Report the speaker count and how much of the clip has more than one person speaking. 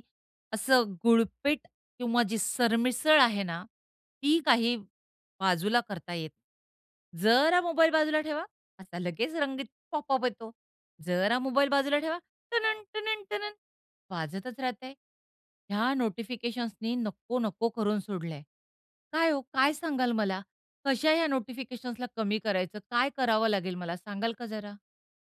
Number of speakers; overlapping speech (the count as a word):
one, no overlap